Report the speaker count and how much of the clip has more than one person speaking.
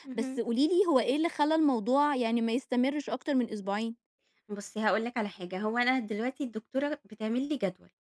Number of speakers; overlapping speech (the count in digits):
2, about 3%